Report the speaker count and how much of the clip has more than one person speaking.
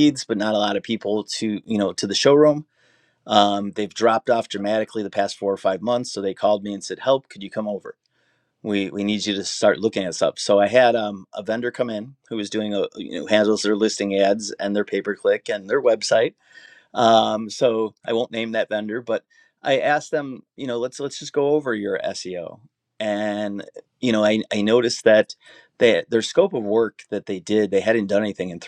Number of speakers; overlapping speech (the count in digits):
1, no overlap